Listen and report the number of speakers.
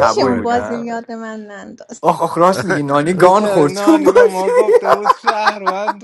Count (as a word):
three